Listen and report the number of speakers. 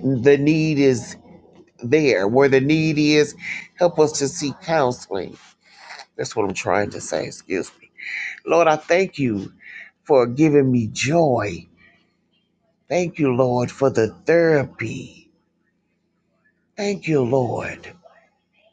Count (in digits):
1